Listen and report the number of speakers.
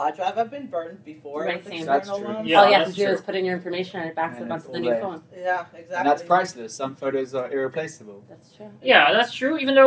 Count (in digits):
4